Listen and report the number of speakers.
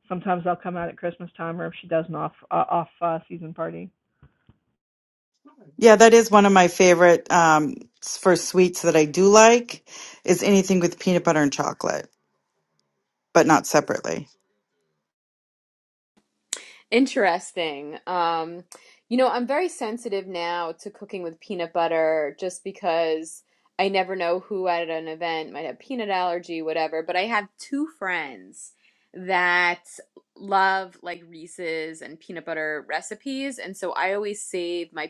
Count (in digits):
3